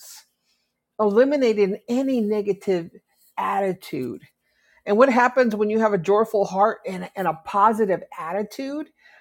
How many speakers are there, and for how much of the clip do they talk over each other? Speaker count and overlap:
one, no overlap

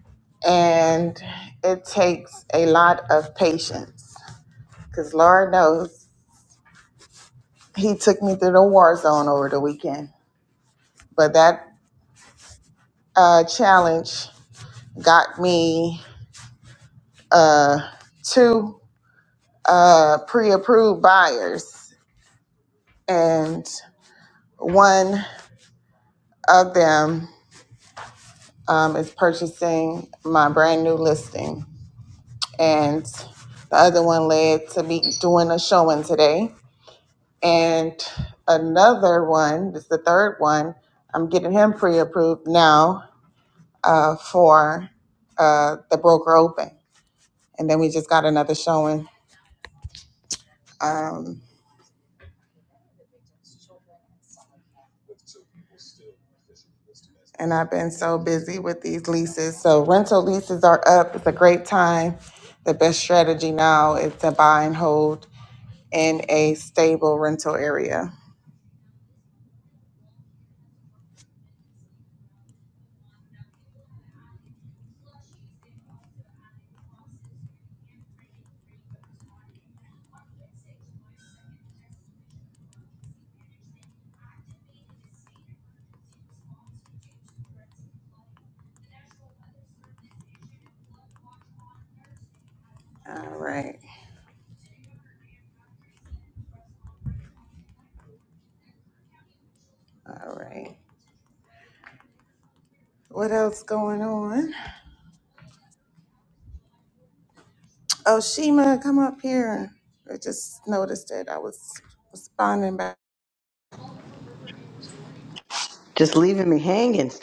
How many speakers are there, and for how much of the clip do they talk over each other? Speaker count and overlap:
two, no overlap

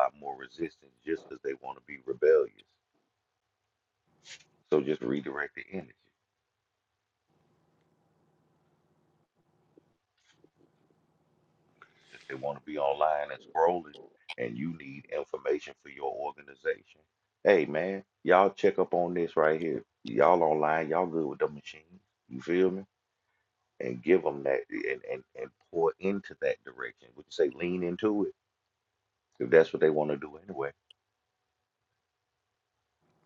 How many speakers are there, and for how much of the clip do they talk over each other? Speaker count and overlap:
one, no overlap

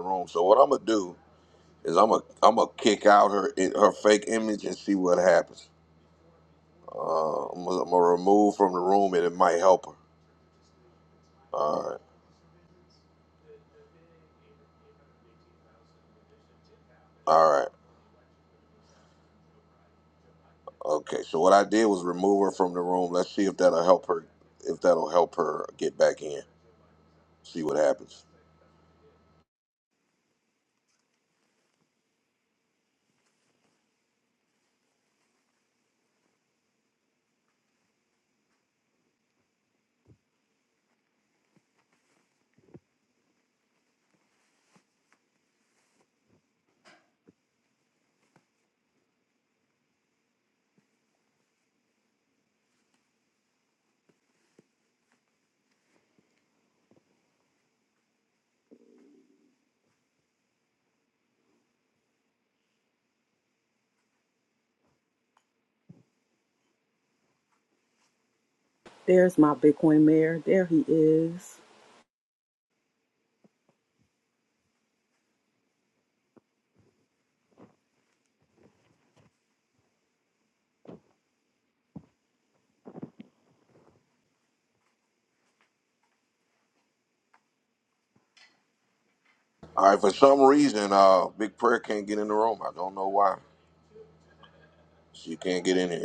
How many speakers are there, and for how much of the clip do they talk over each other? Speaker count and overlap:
two, no overlap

